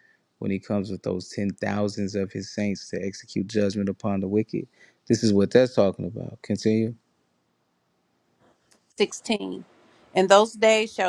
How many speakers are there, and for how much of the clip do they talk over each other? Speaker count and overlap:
two, no overlap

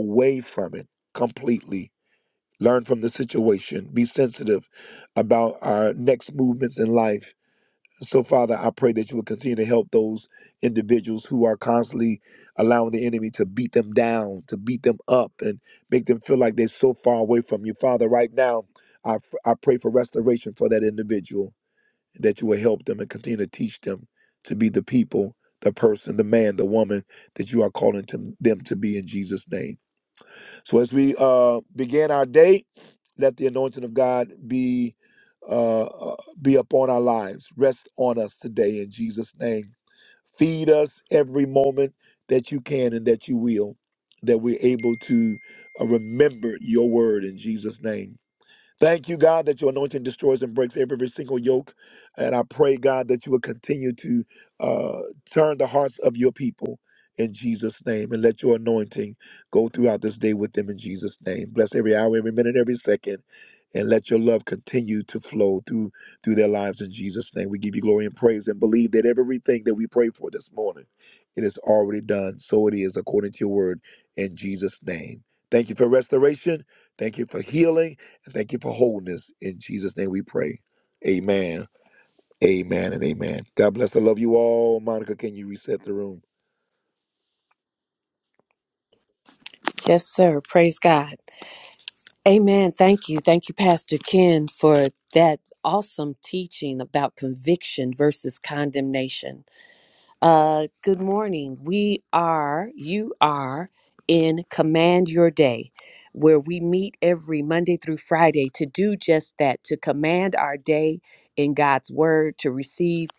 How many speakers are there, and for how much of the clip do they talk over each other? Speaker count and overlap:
two, no overlap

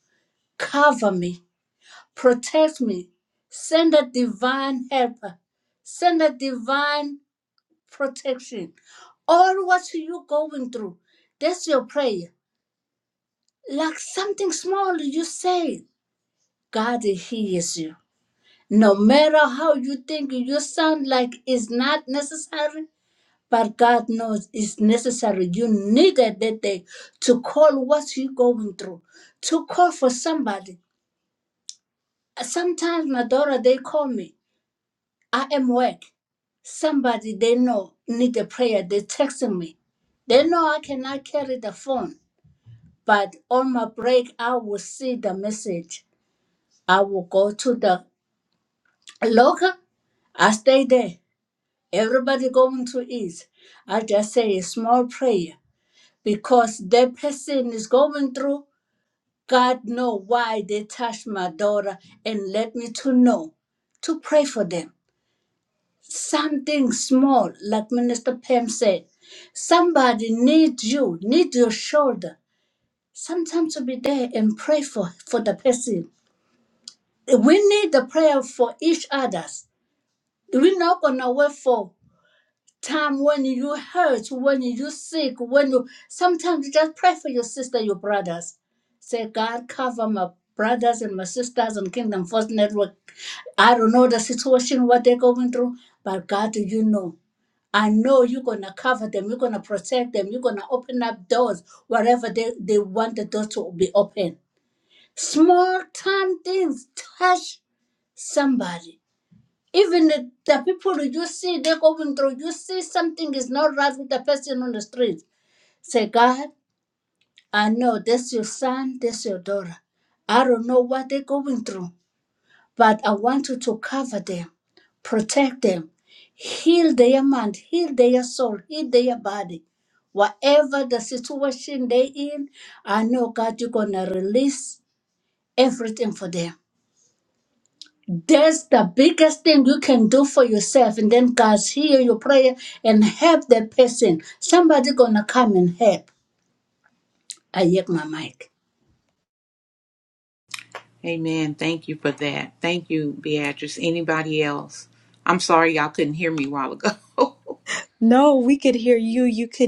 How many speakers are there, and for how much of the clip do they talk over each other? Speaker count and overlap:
three, no overlap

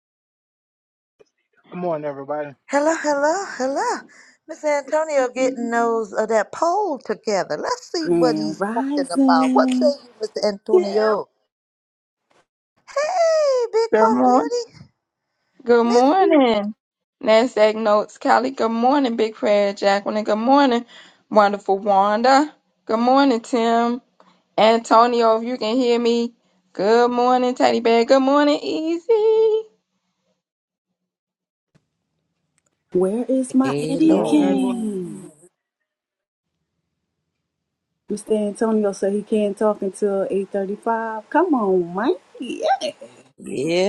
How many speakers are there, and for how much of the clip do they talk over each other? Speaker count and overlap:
five, about 11%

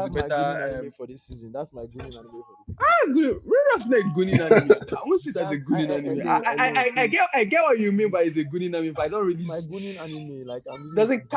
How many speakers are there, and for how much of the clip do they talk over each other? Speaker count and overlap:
two, about 32%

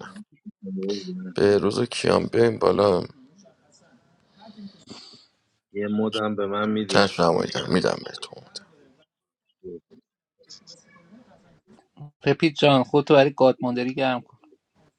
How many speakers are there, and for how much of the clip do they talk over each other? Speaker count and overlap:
three, about 7%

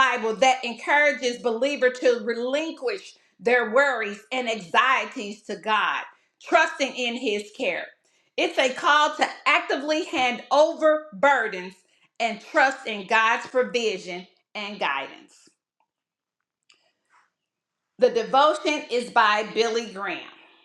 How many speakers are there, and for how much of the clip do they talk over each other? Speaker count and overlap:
one, no overlap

